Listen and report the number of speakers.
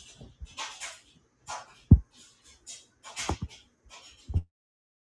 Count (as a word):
zero